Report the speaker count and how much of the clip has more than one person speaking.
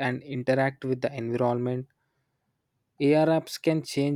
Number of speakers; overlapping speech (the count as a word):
one, no overlap